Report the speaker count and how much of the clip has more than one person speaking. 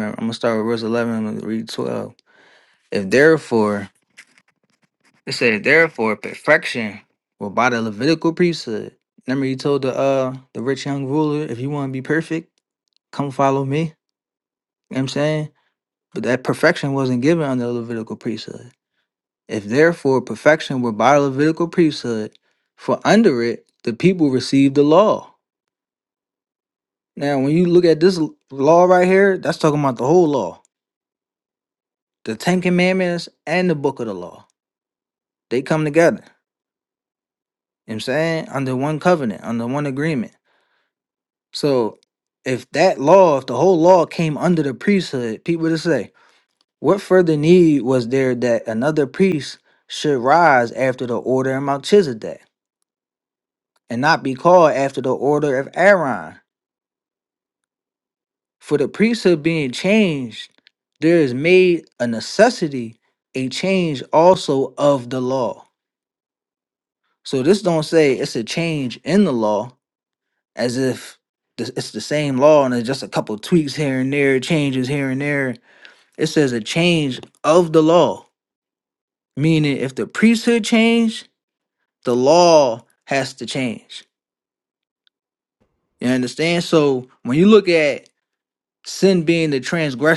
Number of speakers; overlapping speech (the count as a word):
one, no overlap